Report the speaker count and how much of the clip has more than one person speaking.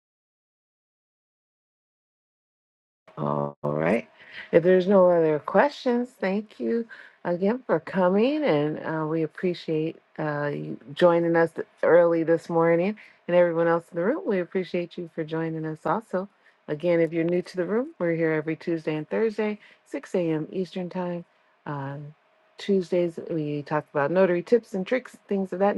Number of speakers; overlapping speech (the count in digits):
1, no overlap